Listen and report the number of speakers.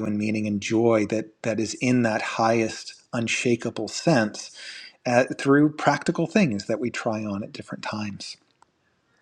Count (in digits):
1